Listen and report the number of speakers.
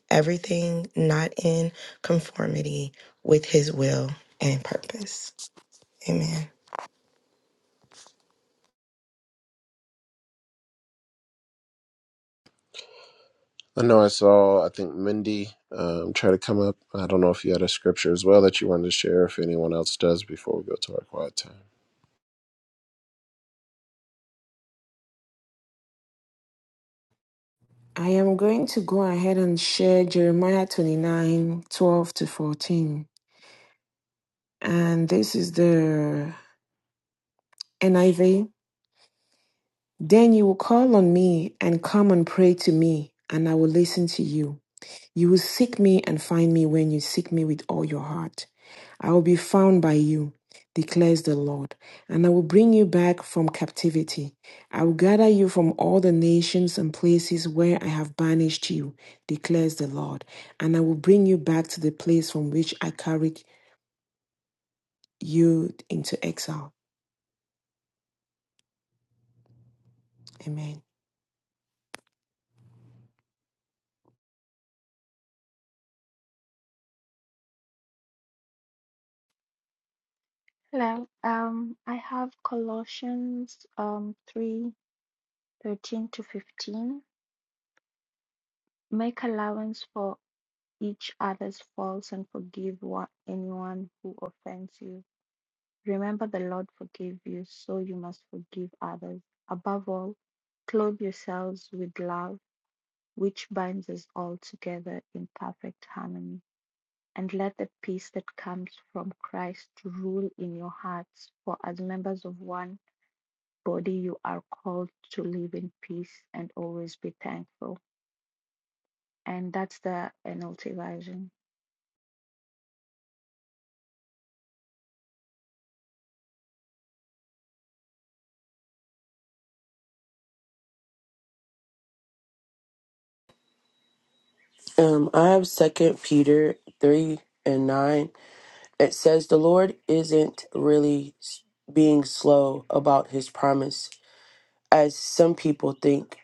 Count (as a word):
five